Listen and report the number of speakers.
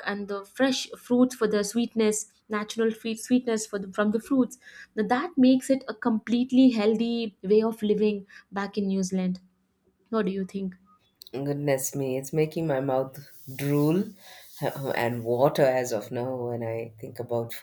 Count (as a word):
two